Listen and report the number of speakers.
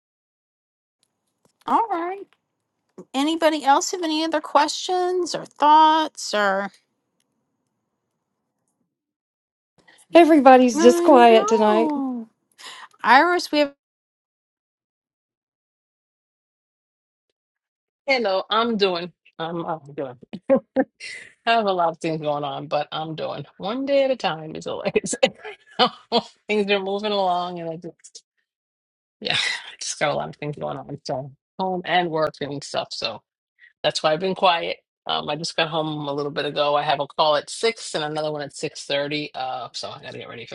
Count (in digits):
3